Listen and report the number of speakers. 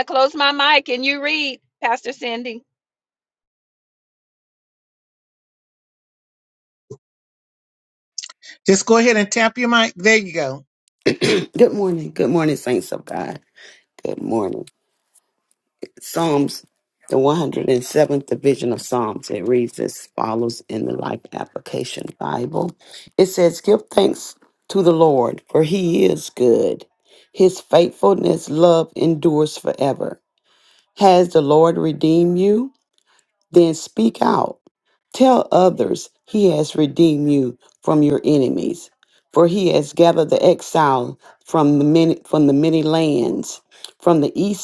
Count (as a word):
three